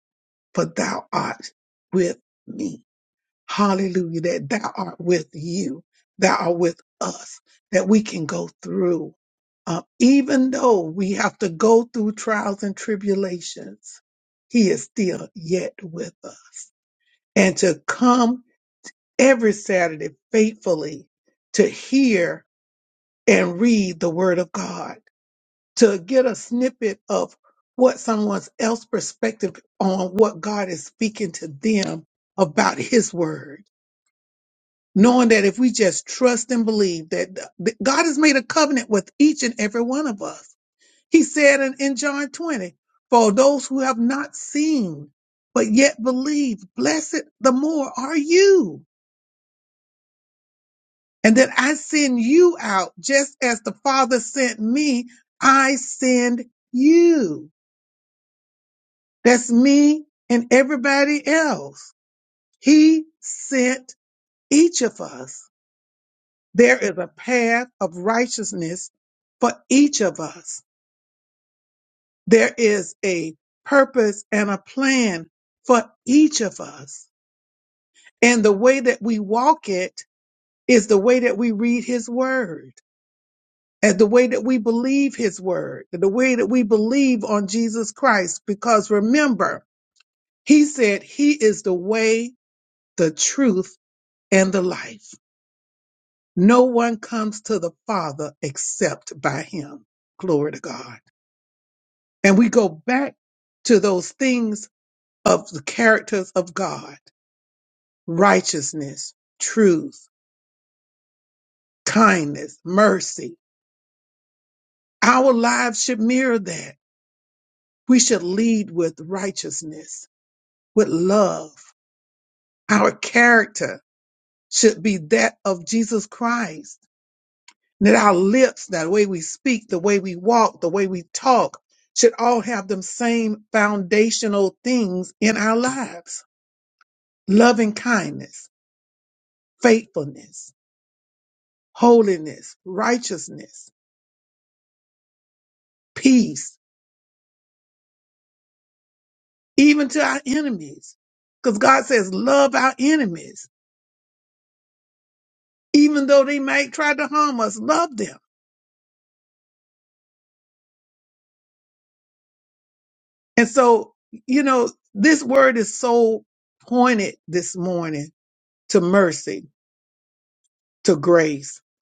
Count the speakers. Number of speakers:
one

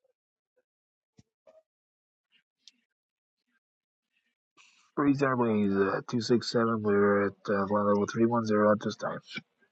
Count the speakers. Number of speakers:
one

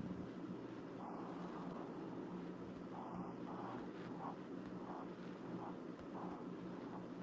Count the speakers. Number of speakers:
zero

